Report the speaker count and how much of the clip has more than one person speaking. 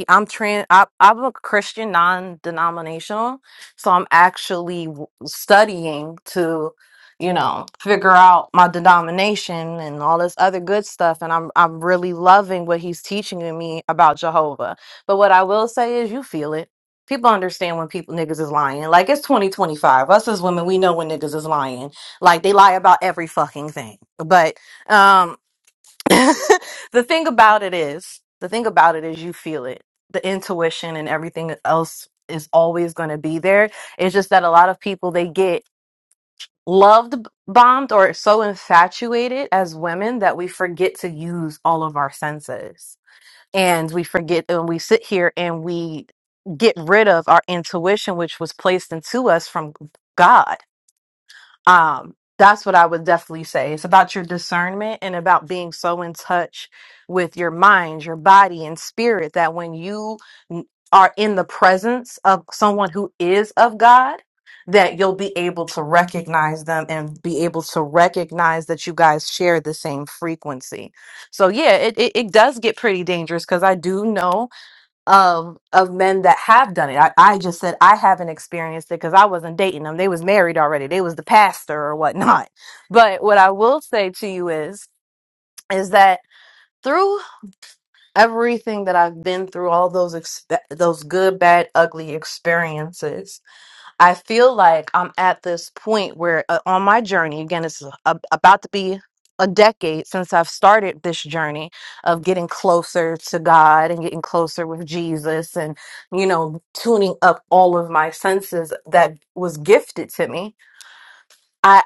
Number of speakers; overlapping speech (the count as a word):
one, no overlap